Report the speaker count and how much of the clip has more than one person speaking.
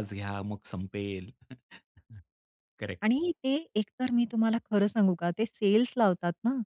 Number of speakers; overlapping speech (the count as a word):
two, no overlap